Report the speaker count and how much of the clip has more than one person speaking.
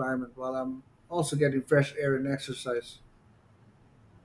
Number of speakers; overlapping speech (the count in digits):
1, no overlap